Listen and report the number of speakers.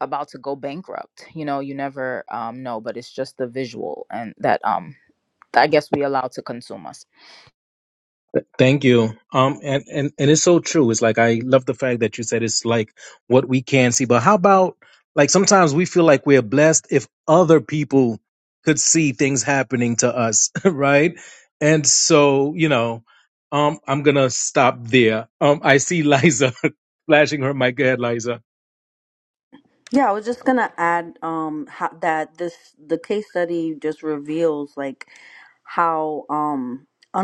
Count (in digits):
3